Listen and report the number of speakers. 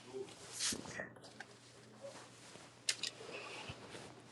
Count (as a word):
zero